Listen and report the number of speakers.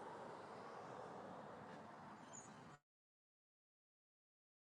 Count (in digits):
0